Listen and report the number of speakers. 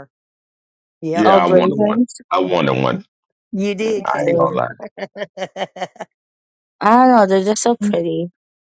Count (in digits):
3